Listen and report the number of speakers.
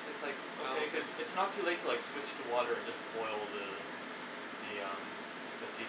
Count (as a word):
one